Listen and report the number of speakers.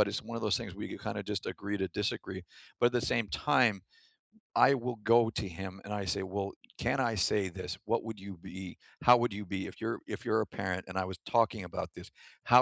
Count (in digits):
1